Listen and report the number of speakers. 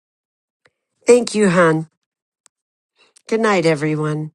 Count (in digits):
1